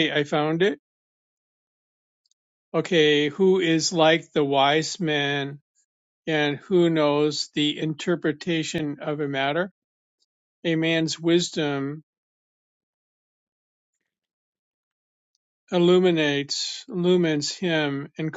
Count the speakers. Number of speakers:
1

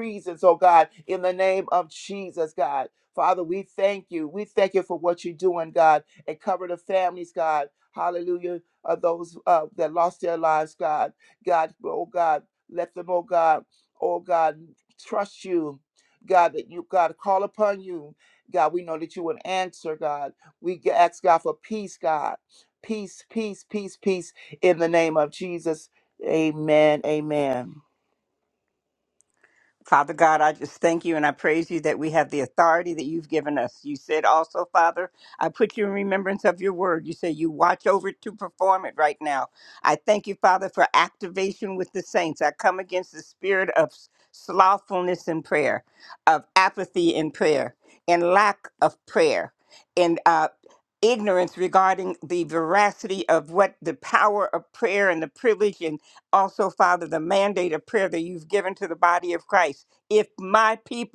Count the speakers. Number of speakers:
2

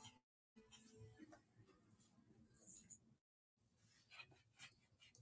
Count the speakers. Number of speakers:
0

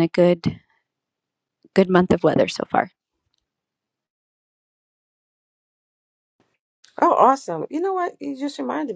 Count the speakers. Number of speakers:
2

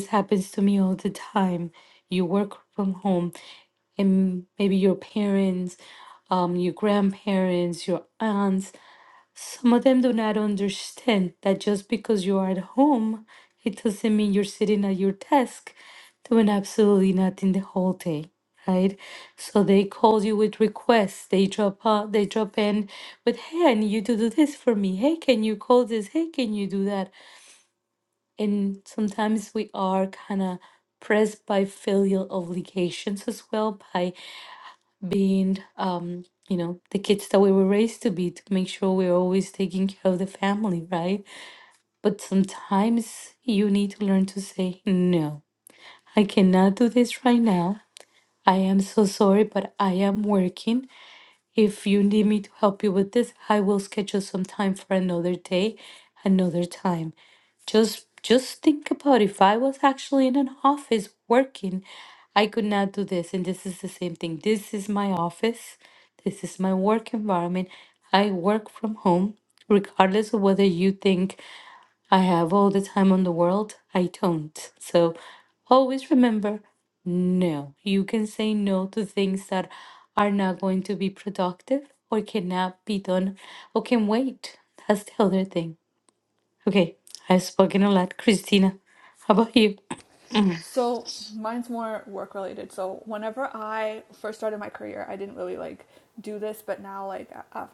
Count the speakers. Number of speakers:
2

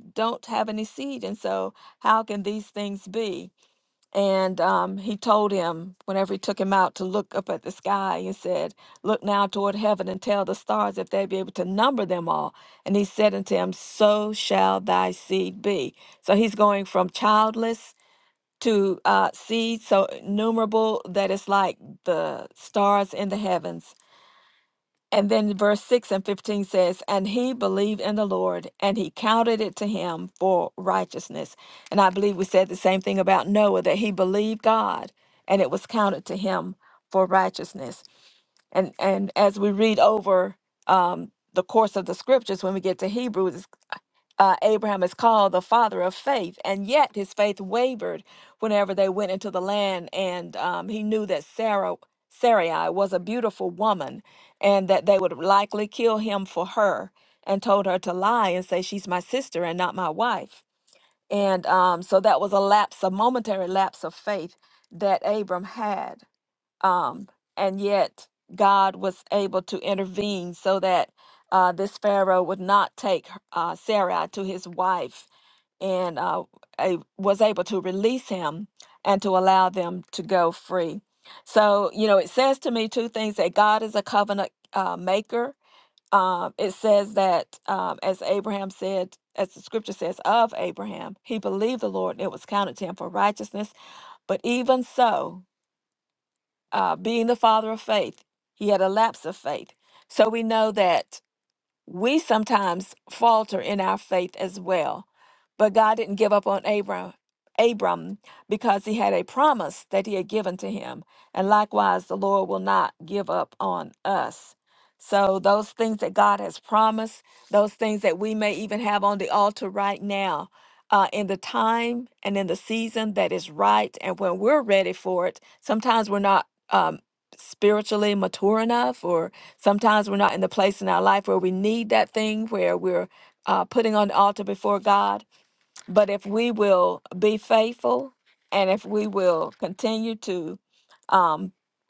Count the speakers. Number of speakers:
1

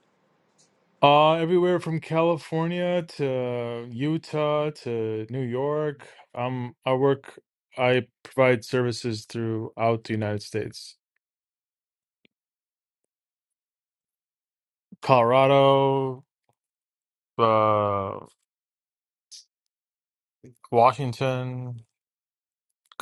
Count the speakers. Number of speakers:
1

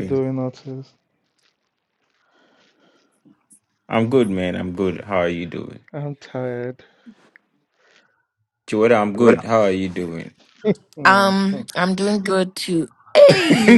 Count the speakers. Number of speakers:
3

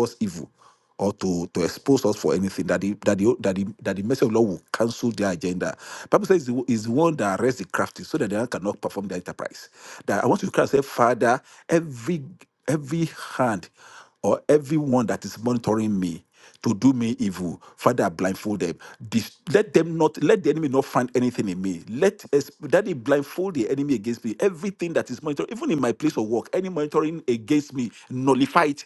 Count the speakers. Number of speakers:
1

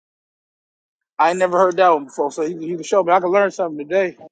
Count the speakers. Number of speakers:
1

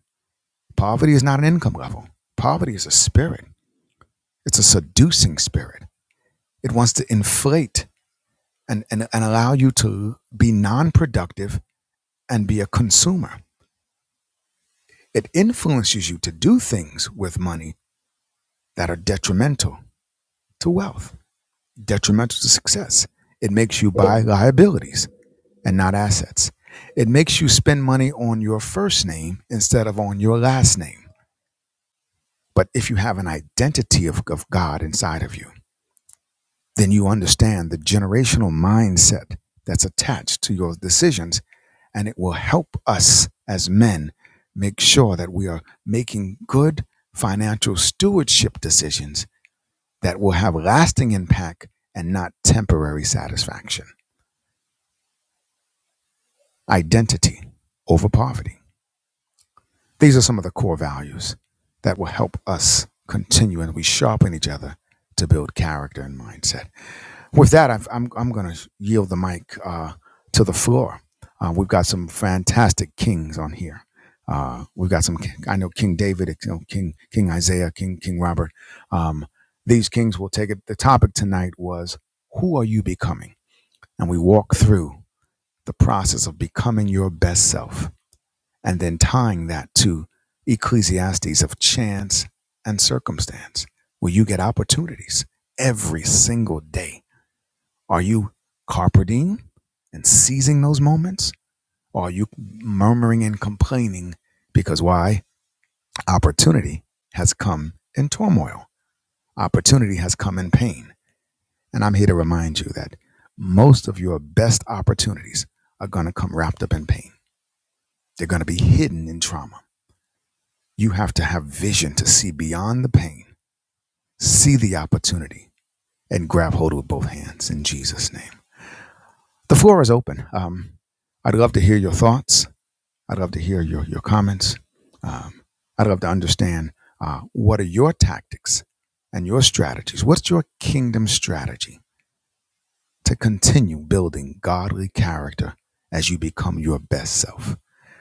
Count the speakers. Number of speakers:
1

